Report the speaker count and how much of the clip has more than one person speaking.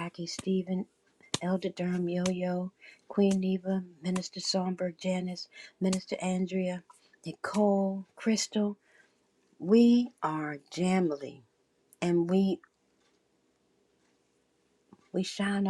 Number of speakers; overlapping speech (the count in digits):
1, no overlap